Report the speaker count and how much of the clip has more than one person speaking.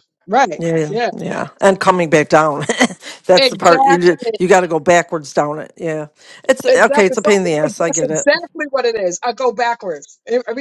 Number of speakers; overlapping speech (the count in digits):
2, about 29%